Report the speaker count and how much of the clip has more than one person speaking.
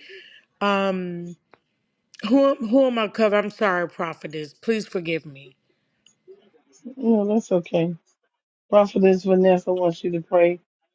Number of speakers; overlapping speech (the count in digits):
2, no overlap